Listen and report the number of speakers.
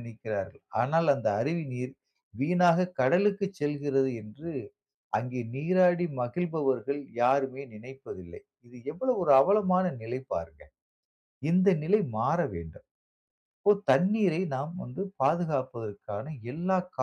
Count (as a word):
one